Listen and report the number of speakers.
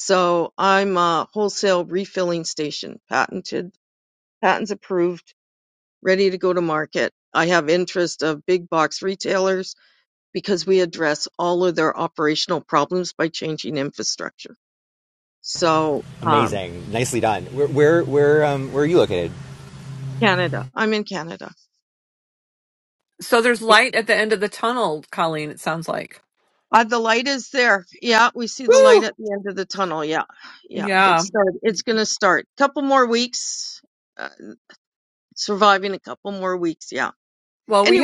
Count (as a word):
three